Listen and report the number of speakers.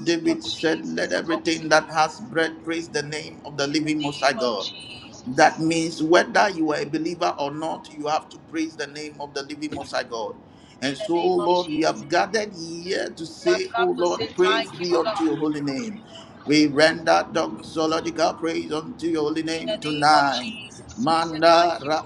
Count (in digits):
2